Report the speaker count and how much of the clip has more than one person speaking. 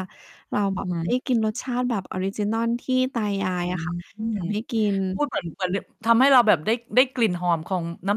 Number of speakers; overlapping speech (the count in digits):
2, about 8%